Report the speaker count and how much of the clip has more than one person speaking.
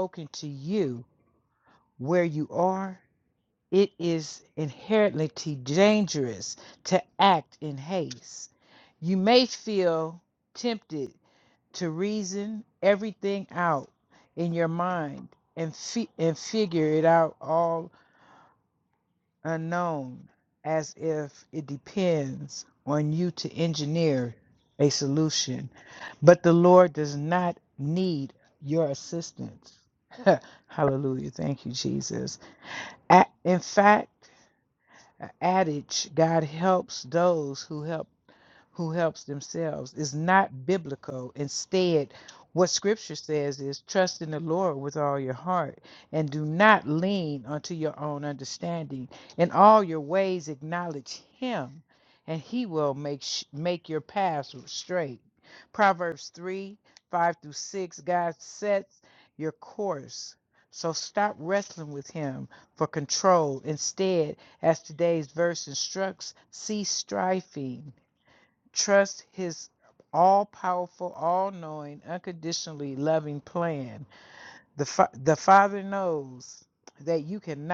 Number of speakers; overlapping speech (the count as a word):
one, no overlap